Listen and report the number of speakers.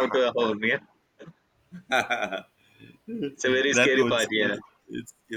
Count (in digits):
2